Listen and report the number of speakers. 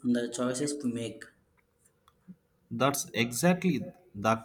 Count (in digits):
2